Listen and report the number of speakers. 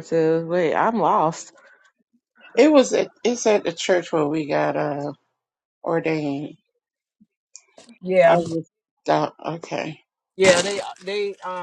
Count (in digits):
3